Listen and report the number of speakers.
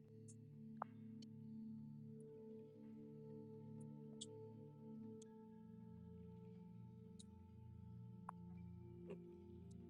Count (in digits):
0